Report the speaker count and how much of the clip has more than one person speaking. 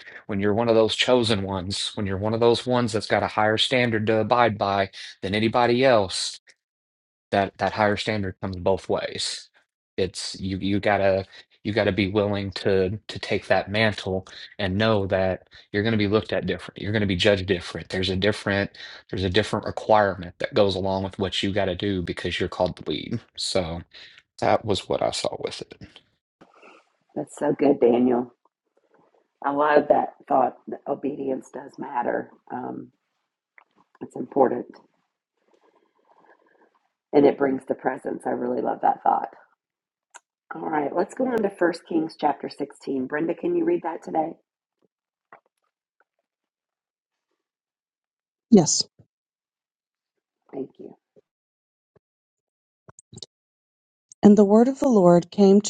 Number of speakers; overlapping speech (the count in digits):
3, no overlap